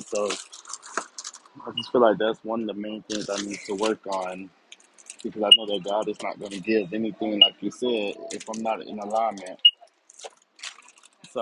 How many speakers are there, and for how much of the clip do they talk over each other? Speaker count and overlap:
1, no overlap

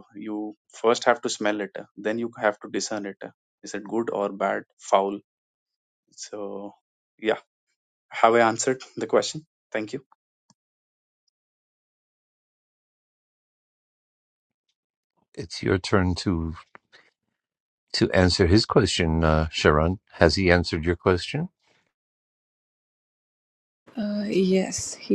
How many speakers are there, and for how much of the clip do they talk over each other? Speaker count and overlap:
3, no overlap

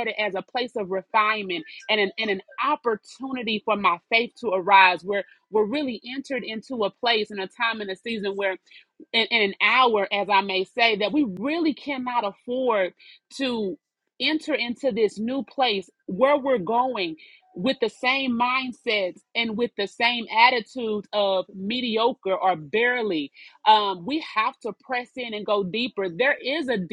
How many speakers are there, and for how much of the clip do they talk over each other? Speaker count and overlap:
1, no overlap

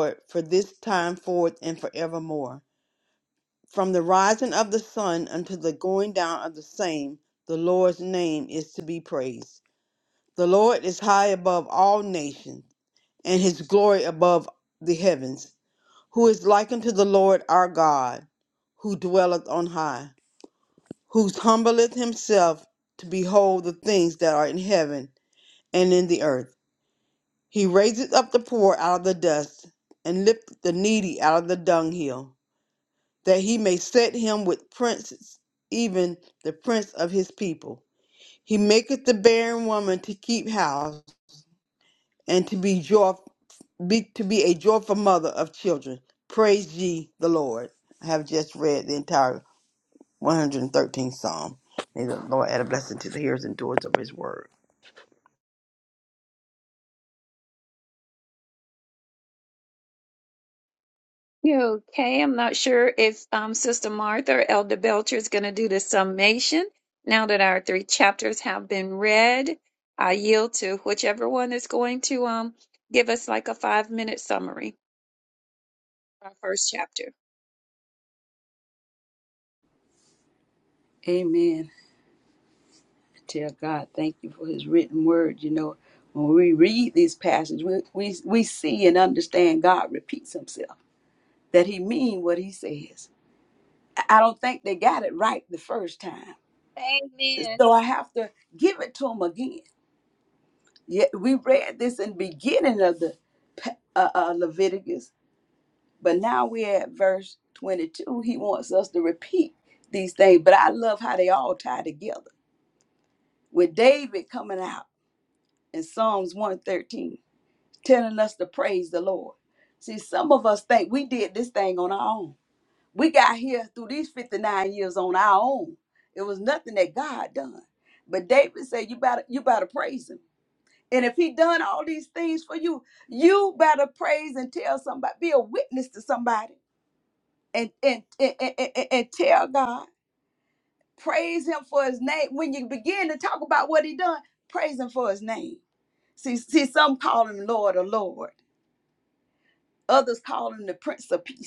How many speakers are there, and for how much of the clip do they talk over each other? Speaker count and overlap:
3, under 1%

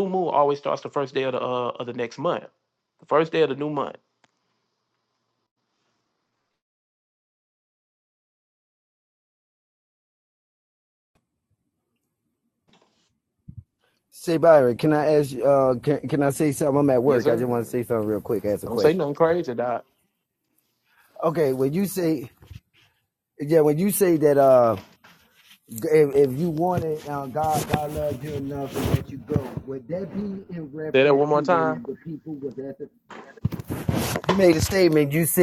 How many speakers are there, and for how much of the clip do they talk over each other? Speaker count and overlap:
2, about 4%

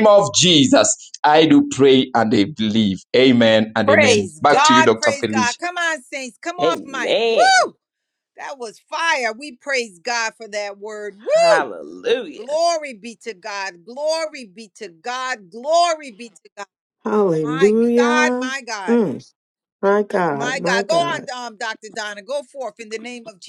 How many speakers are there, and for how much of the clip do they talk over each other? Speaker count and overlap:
4, about 20%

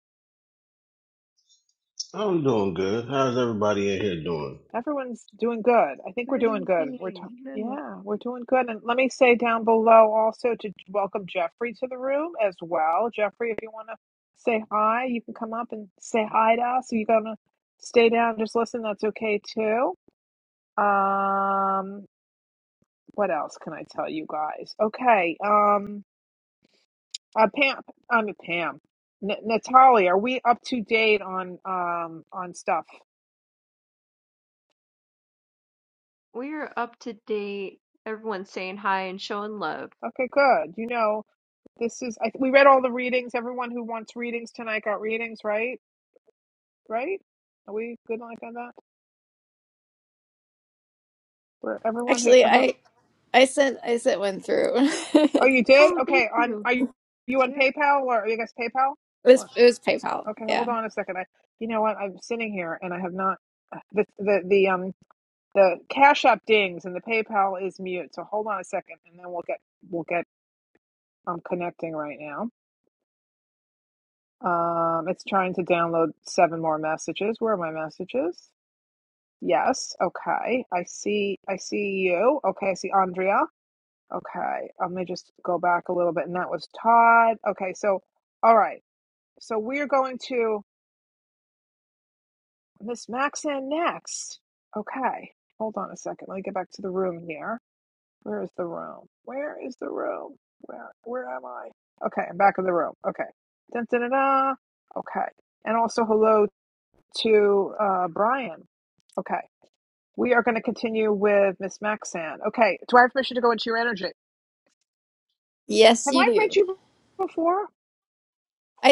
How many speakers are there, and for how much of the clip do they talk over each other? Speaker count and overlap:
4, about 4%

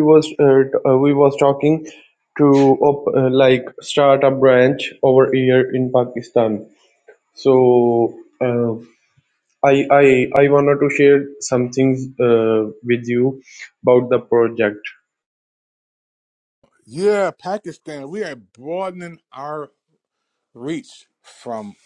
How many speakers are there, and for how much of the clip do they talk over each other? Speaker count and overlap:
2, no overlap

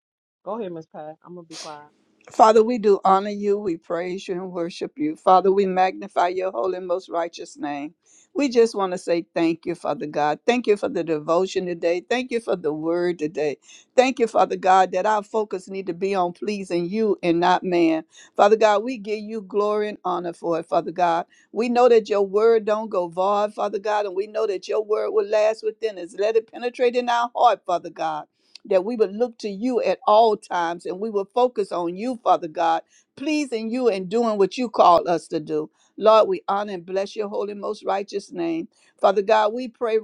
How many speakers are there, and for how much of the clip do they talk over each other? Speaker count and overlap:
2, no overlap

